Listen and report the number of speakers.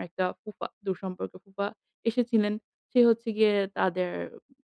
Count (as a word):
one